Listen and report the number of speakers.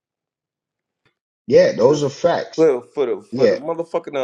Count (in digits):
2